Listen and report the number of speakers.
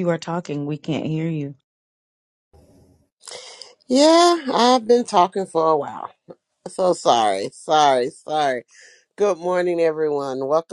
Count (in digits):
2